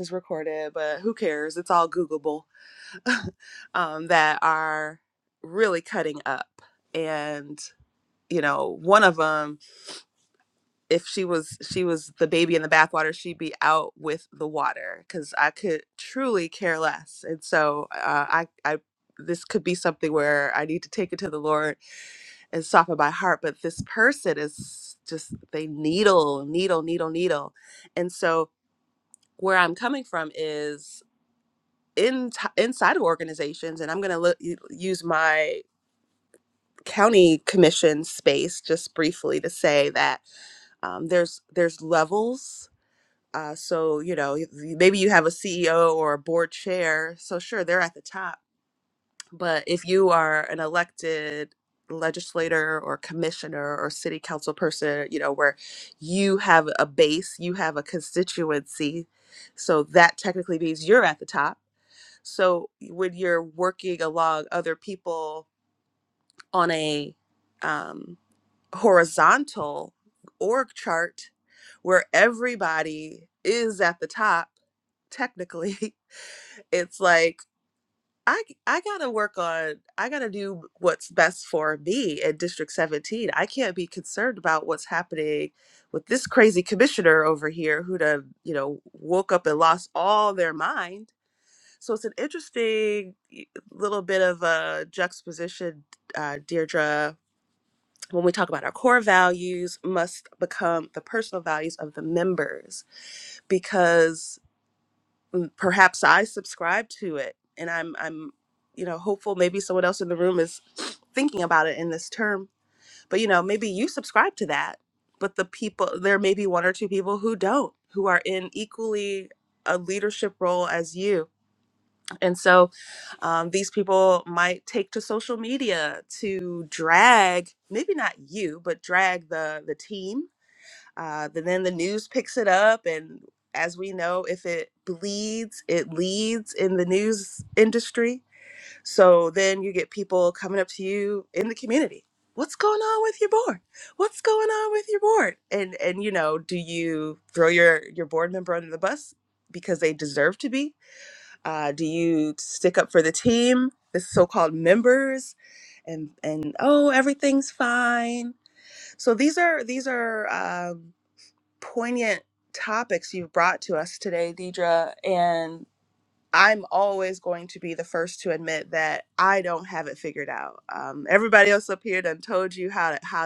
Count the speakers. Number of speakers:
one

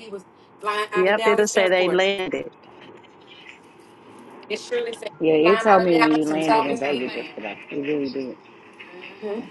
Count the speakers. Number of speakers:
three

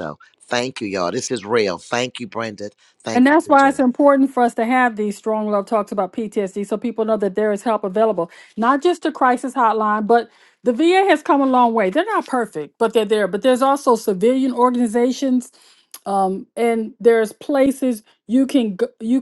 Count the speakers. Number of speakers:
two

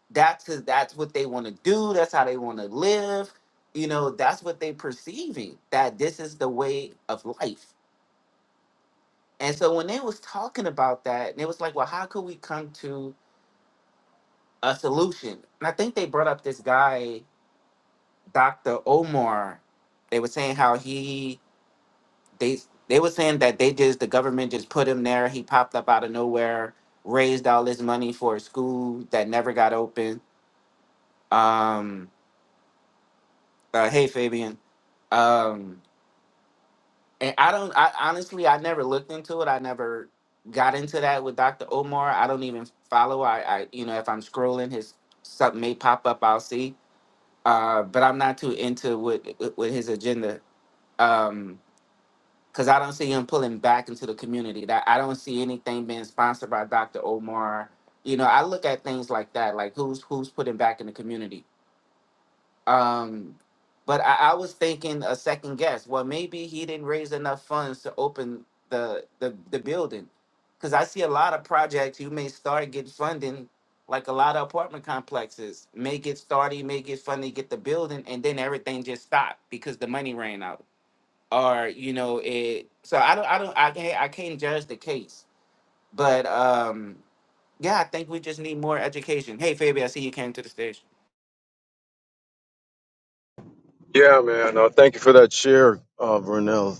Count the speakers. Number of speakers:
two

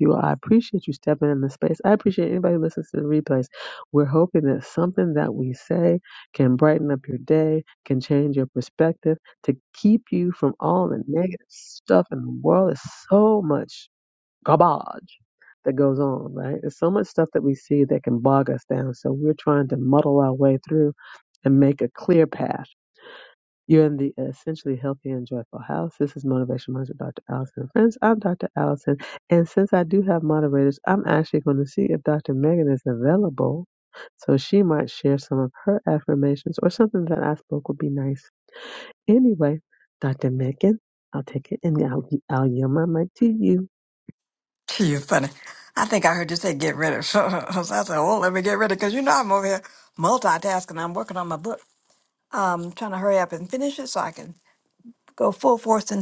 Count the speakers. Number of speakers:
two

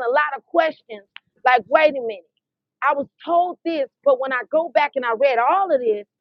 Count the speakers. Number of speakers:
one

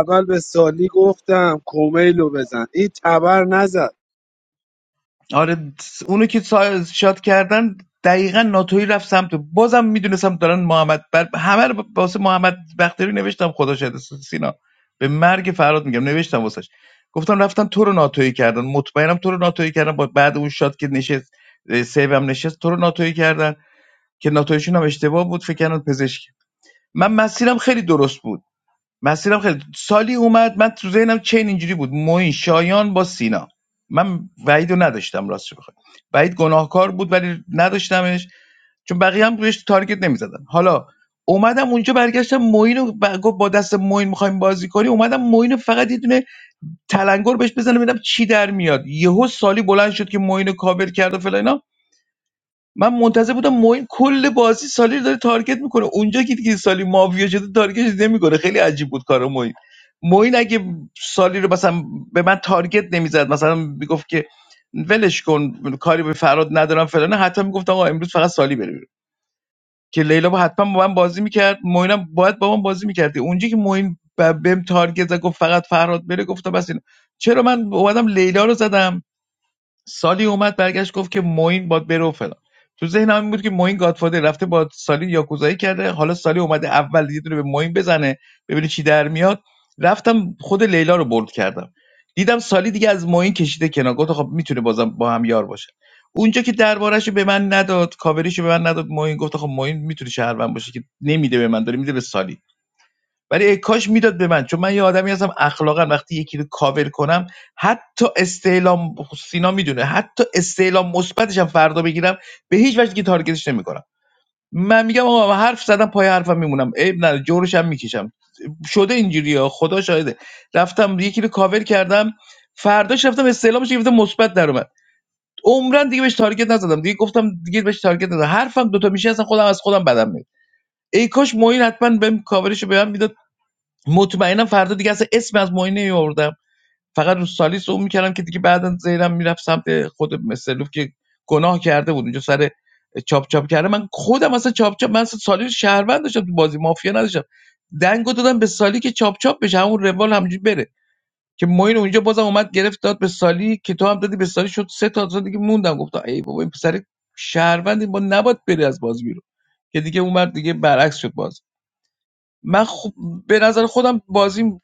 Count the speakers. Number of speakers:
two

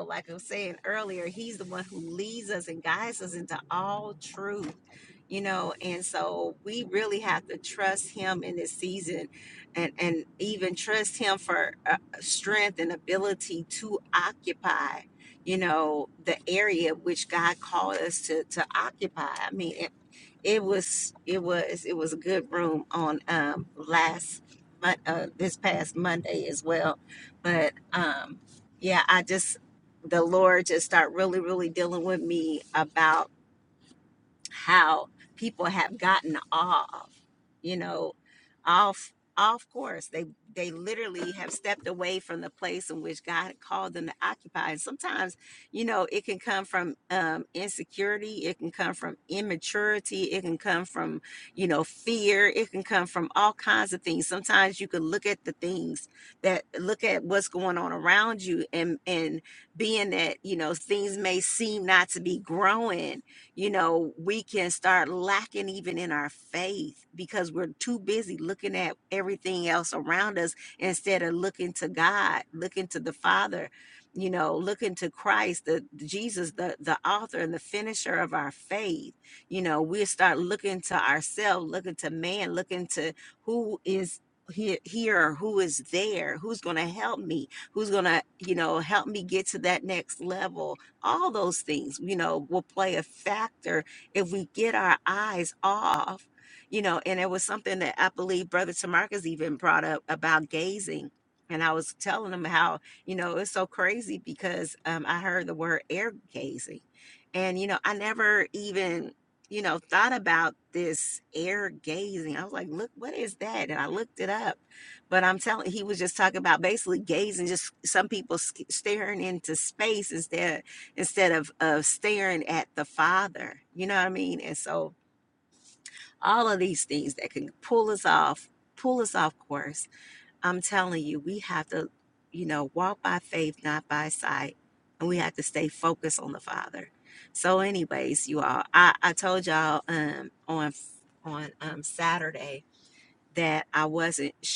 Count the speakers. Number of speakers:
one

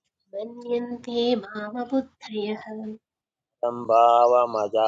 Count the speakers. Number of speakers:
two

